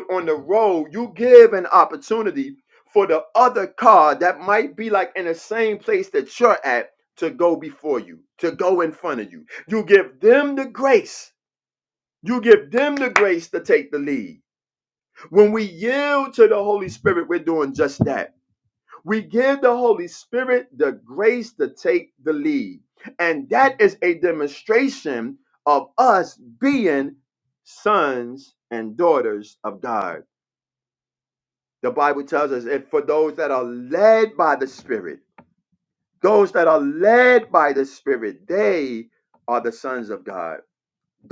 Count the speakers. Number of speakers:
one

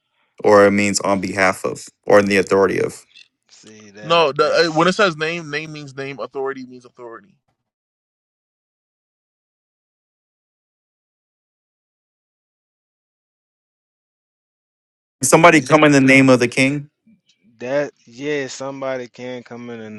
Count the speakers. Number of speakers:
three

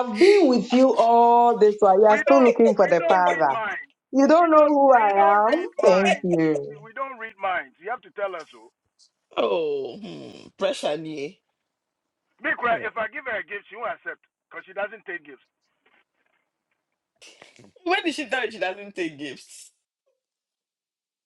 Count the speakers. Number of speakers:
three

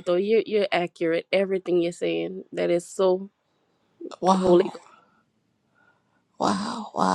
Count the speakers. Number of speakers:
two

